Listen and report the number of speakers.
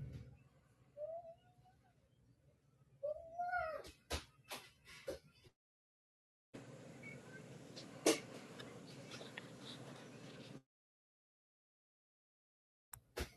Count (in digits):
0